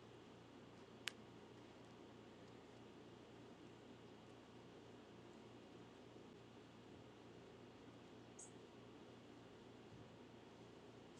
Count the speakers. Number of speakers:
zero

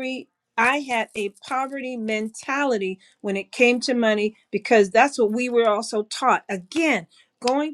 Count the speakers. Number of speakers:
one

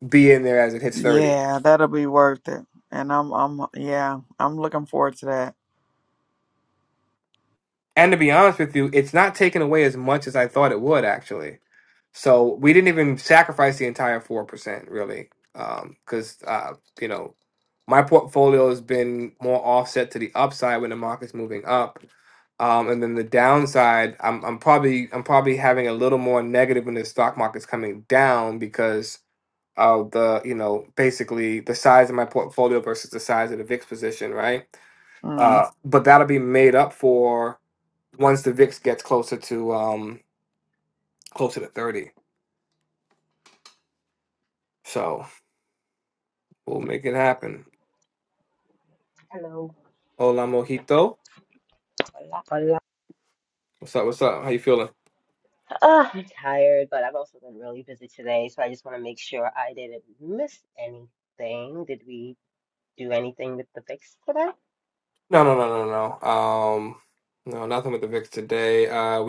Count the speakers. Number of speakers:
three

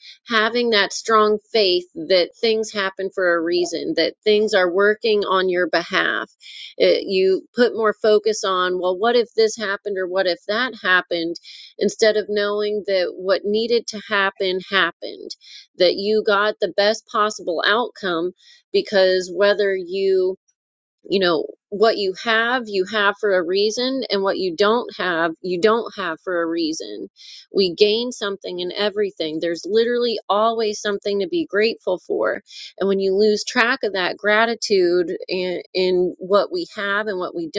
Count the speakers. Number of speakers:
one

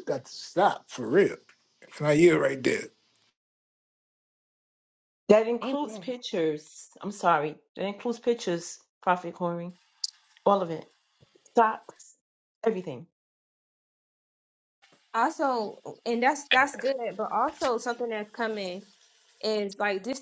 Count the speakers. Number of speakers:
three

